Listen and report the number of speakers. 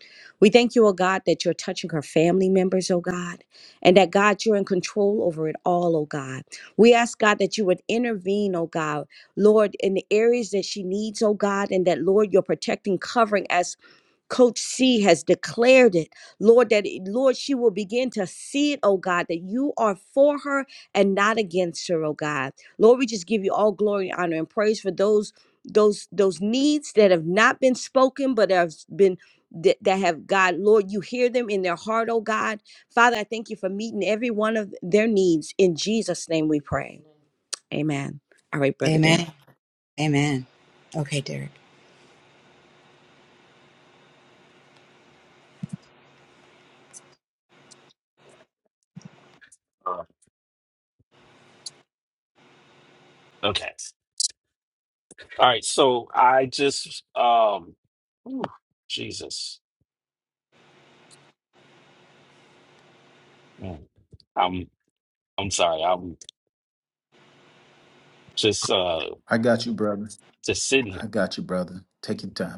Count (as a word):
four